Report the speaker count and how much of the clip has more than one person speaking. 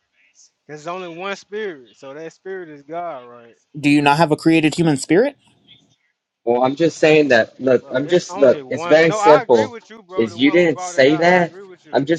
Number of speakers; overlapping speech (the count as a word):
three, about 27%